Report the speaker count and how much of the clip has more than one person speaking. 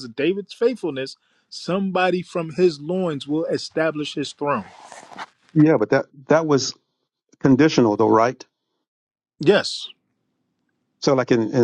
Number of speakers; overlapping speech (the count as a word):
two, no overlap